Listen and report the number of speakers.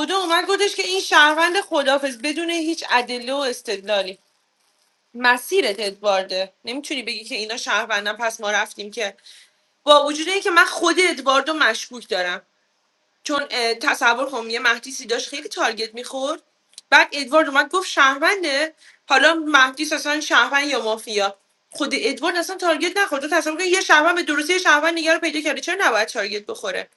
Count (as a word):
one